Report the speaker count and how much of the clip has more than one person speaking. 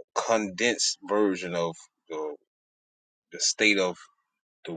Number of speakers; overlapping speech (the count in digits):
1, no overlap